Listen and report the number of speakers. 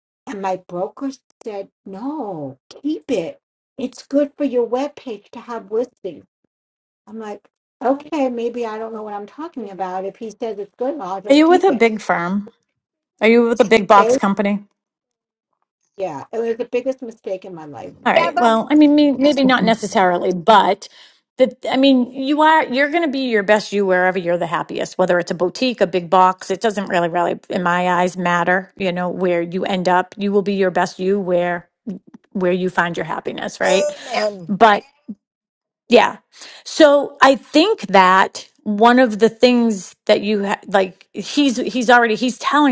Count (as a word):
three